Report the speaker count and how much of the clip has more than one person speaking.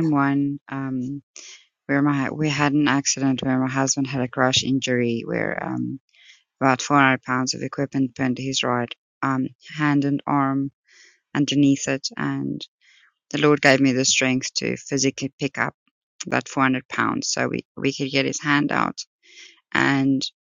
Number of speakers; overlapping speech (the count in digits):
1, no overlap